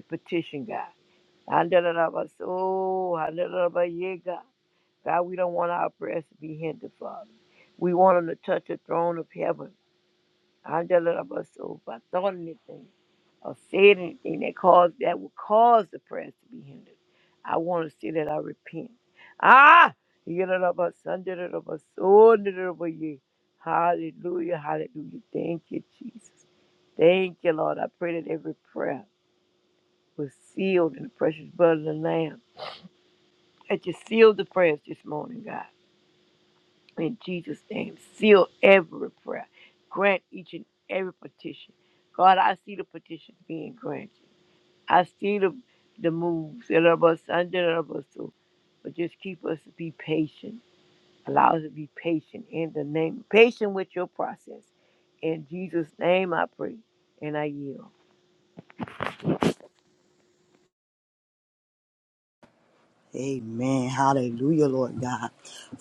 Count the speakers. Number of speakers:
2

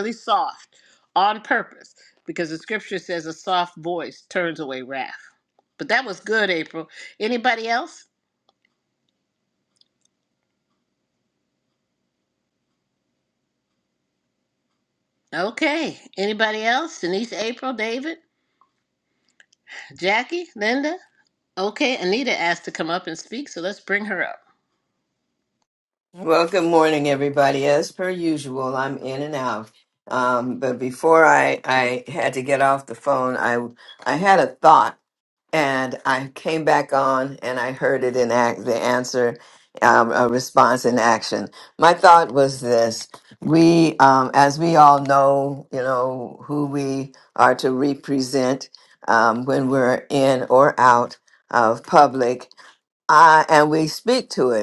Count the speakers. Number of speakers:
2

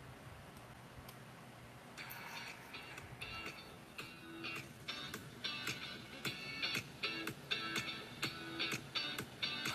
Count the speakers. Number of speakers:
0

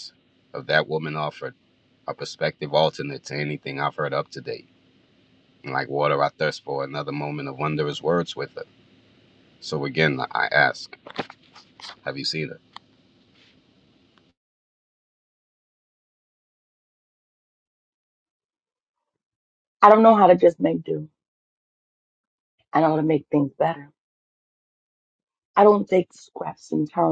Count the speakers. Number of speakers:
2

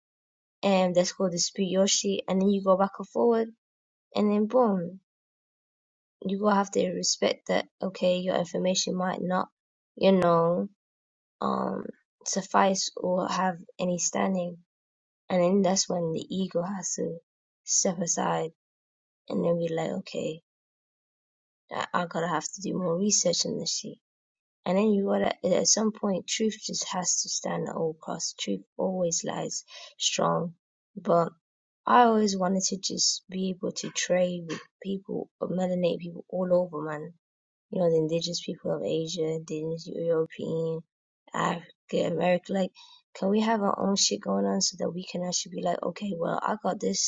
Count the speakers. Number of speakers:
1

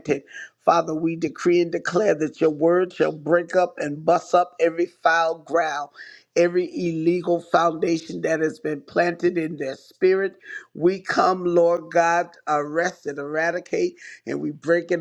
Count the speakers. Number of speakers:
1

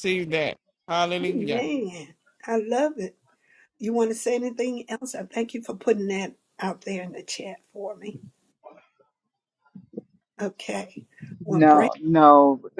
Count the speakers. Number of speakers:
3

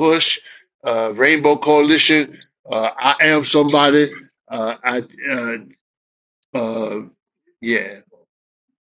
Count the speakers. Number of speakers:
1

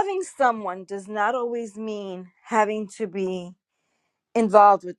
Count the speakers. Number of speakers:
1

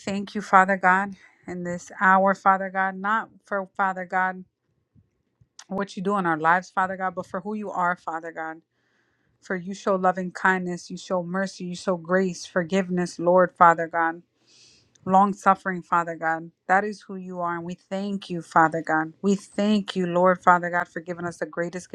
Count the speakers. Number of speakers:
1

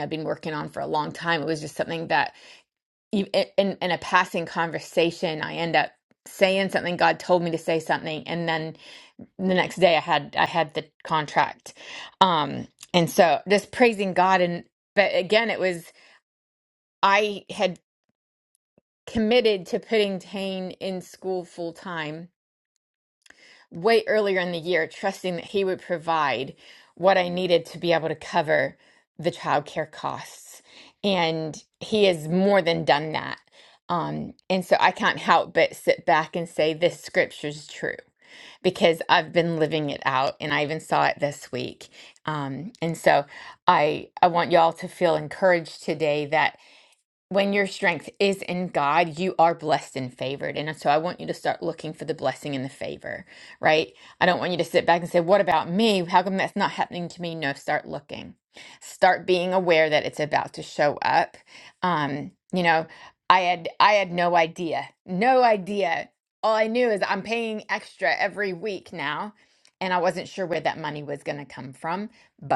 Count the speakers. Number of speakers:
1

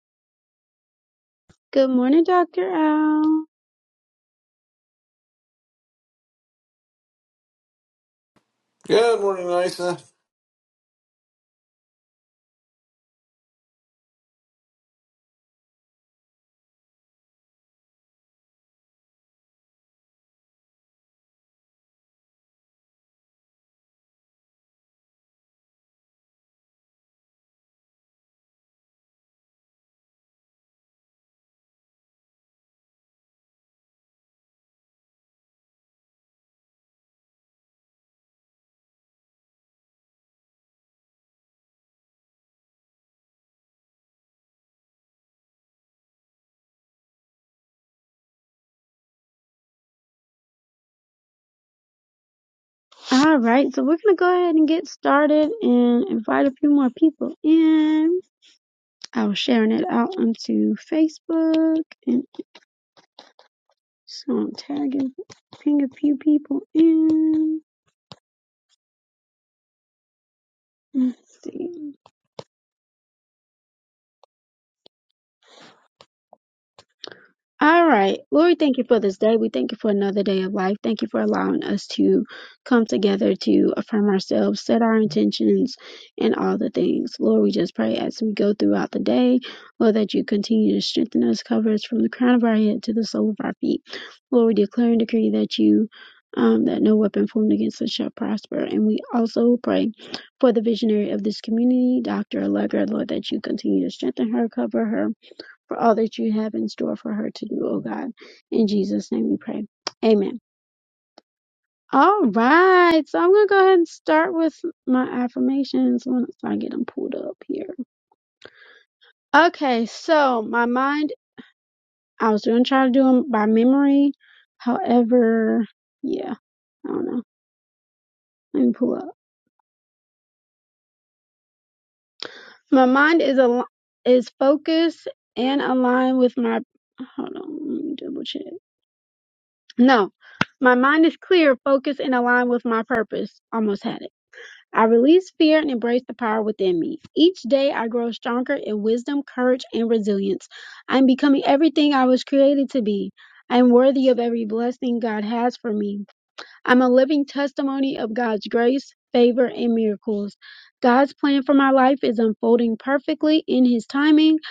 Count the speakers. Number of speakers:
2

